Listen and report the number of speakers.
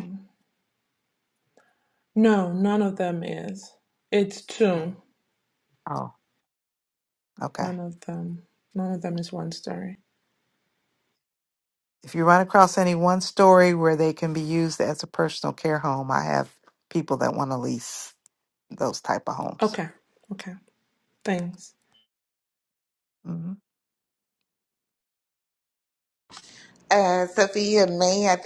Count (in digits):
3